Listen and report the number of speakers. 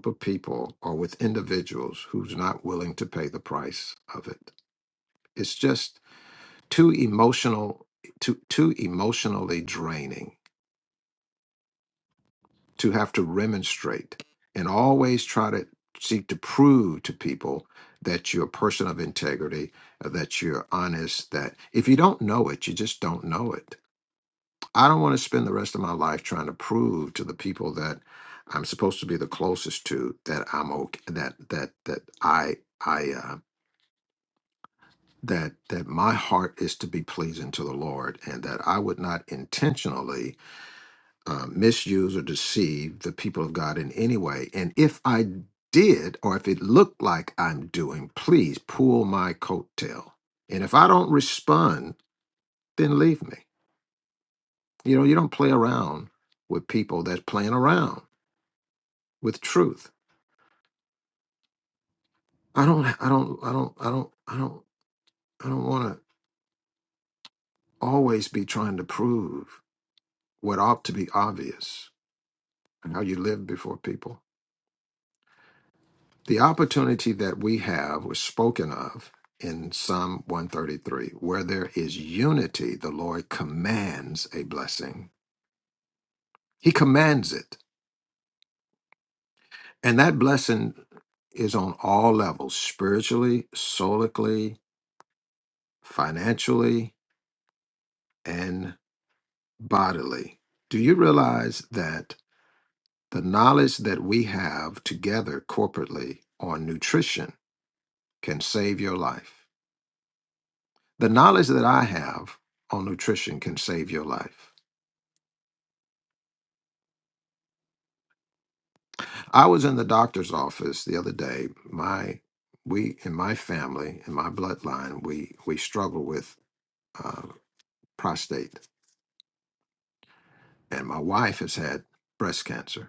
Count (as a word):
one